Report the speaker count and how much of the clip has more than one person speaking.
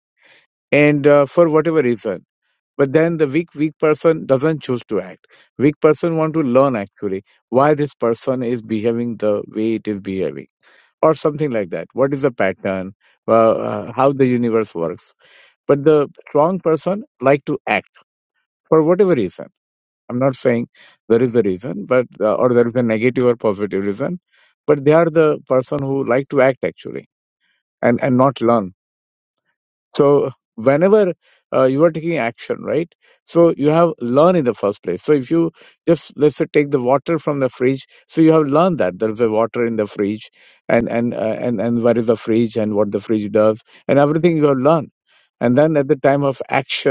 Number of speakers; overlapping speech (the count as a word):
one, no overlap